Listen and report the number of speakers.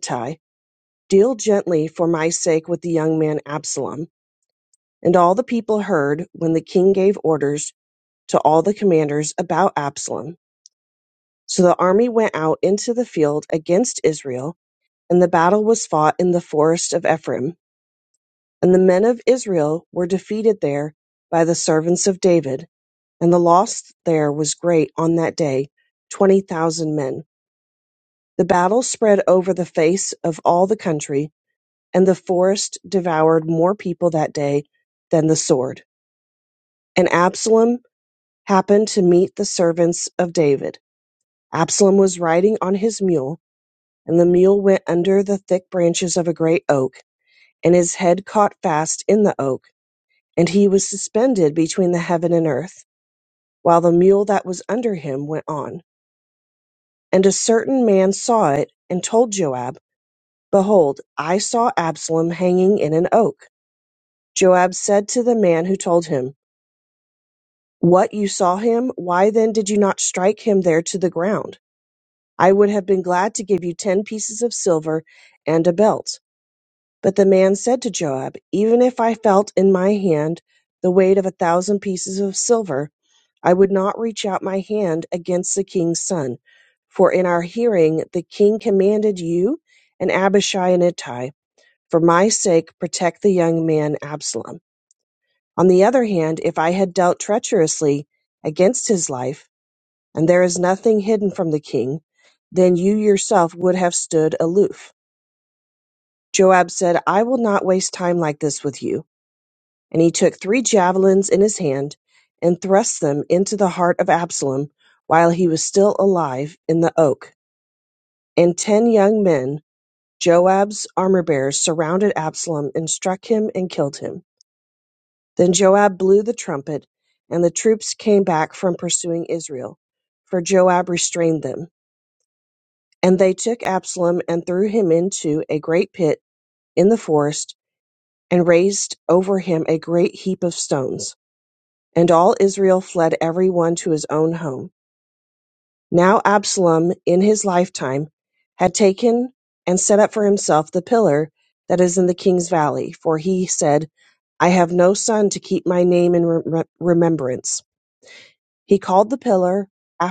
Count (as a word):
one